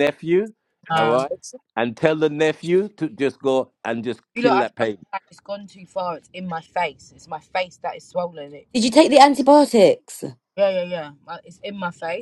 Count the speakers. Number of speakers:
3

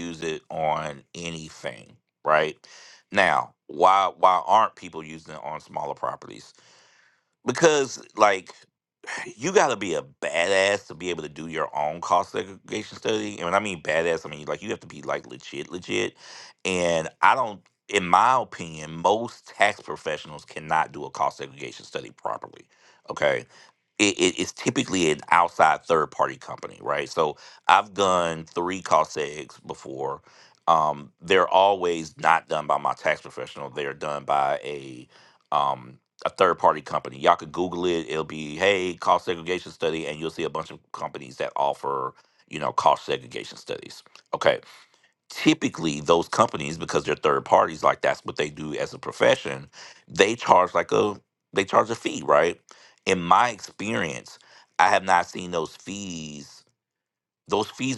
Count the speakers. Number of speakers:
1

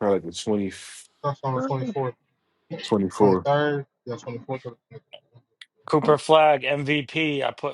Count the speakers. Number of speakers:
3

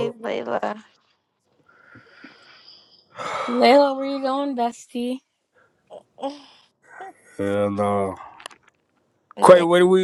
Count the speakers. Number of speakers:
3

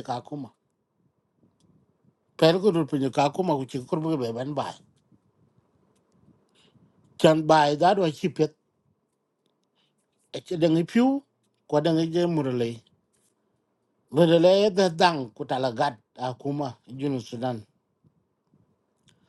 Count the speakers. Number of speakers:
1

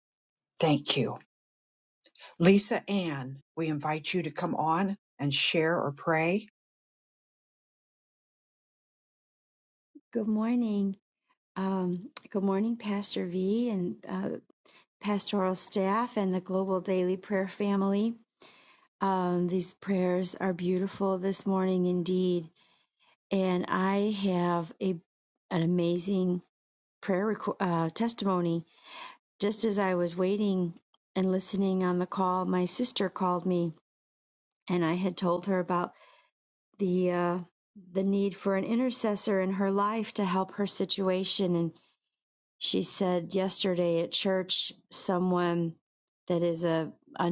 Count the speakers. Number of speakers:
2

